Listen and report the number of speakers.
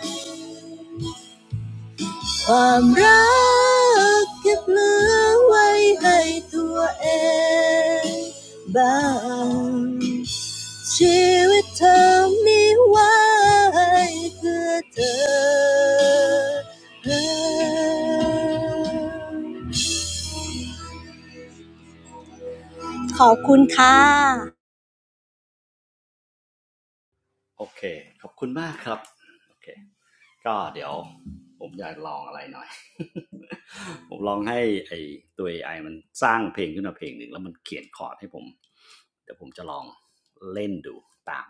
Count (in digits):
2